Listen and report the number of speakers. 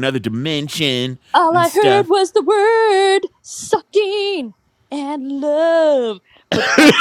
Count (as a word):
two